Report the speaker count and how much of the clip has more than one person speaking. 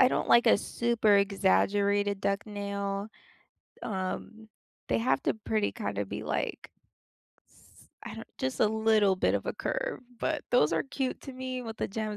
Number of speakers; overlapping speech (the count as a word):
one, no overlap